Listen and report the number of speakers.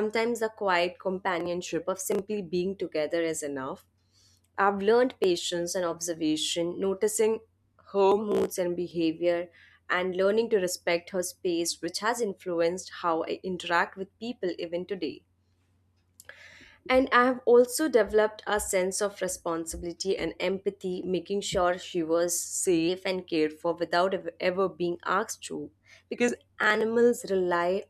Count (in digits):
1